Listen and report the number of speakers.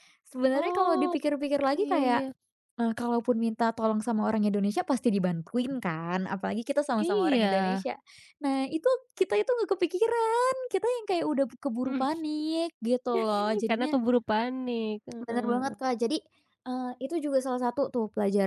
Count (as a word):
two